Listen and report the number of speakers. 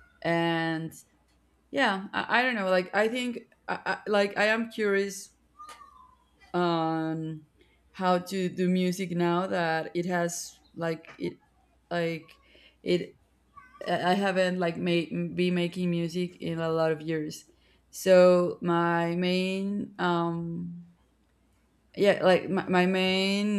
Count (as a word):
one